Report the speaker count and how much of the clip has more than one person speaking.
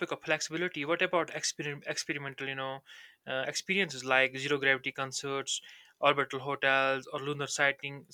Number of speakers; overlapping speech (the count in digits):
1, no overlap